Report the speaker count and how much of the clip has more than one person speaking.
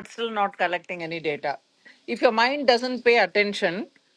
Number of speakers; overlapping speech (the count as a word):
one, no overlap